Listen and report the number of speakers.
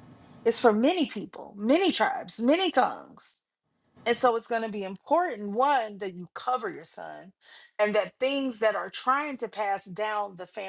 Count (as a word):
one